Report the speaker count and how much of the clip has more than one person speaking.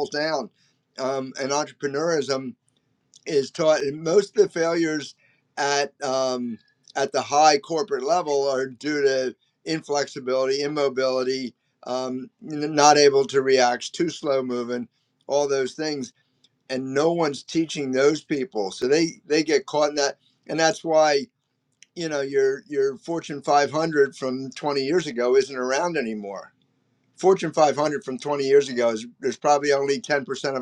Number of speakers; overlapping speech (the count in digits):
1, no overlap